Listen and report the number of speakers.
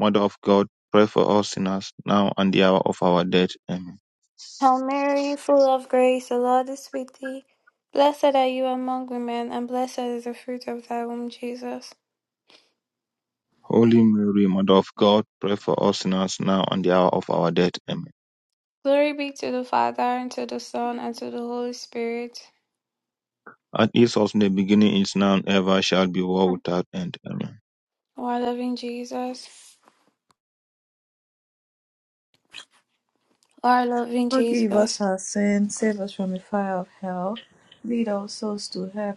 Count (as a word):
three